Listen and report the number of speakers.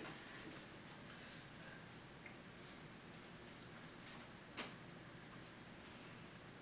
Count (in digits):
0